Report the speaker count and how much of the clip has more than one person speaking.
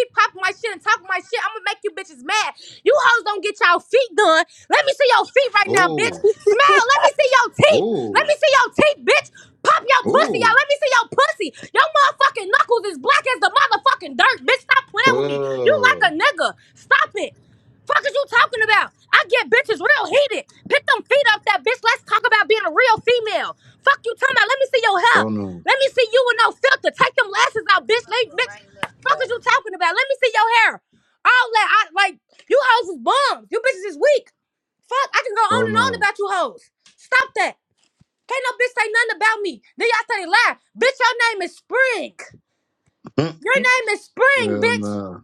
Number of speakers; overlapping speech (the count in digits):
2, about 9%